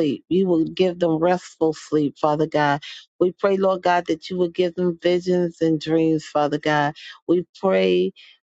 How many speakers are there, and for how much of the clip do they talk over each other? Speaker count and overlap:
1, no overlap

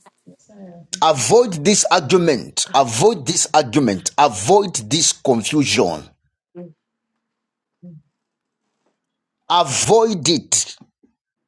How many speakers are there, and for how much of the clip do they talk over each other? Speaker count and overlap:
1, no overlap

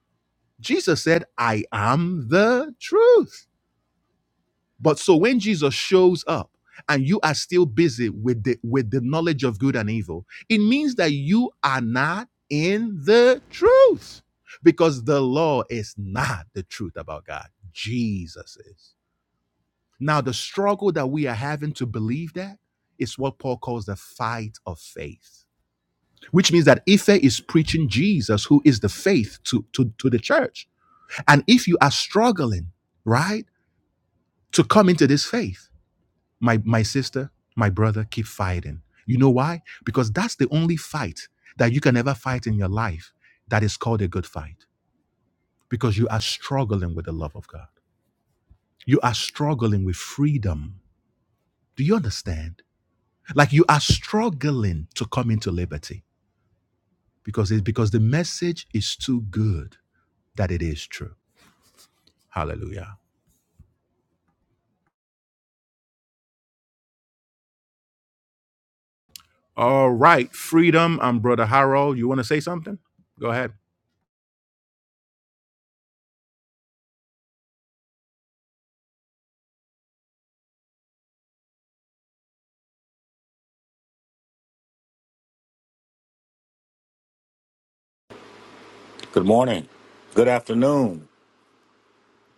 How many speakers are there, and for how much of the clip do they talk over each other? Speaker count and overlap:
2, no overlap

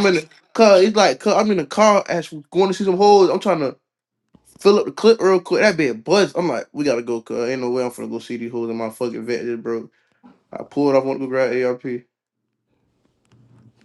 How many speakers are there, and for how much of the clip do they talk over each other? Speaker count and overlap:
1, no overlap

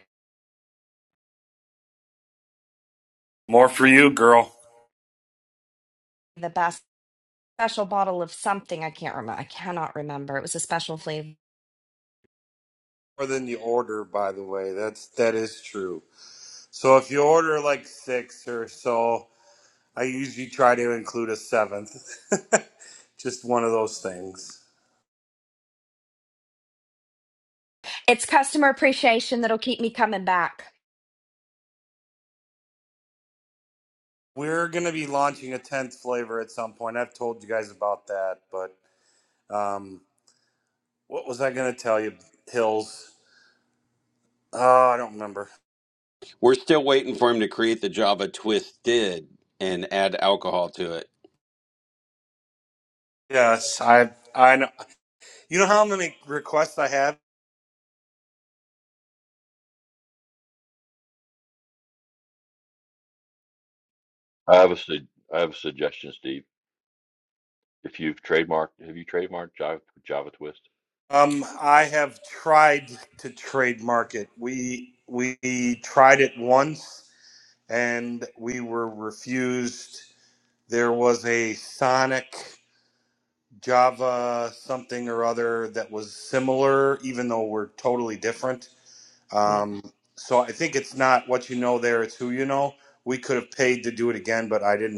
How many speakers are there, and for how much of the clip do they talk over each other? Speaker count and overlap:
4, under 1%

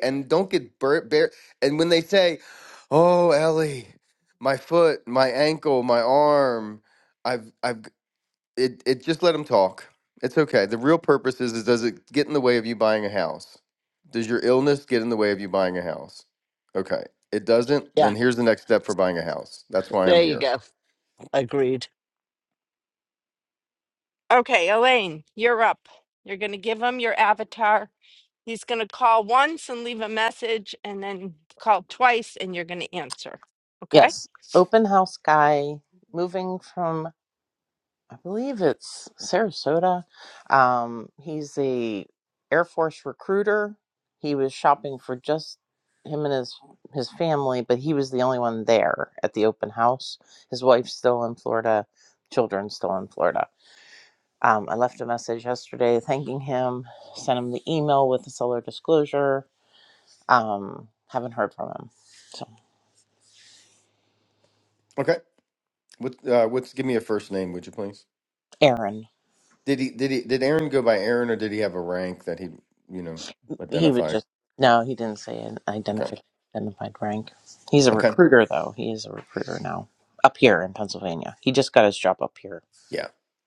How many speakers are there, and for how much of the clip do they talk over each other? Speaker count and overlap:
4, about 2%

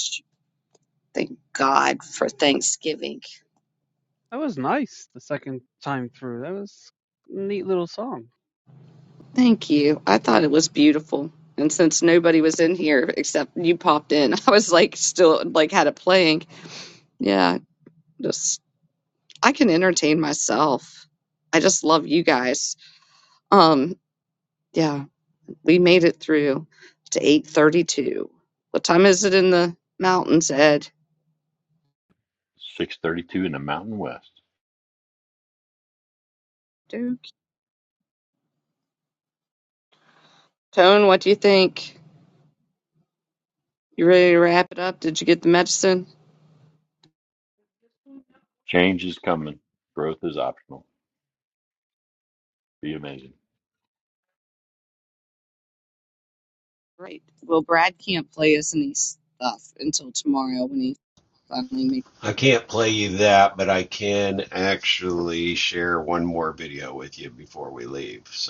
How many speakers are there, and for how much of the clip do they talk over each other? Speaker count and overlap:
4, no overlap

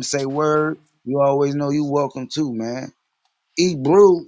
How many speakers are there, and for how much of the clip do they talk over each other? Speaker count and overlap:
1, no overlap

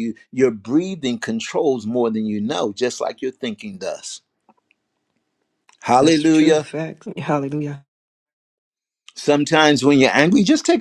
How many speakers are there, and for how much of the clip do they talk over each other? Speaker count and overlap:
2, about 6%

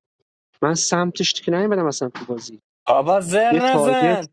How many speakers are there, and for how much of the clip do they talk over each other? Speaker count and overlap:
2, about 15%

